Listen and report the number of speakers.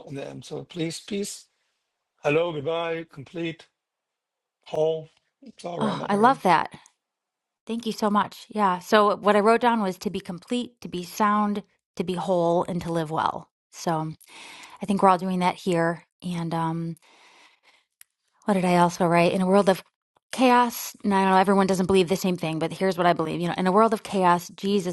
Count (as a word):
two